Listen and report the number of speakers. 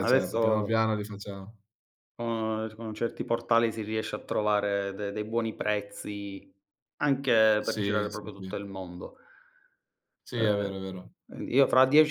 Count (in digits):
2